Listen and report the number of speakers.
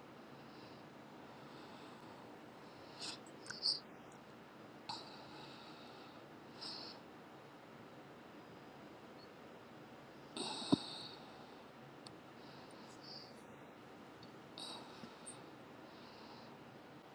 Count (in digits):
0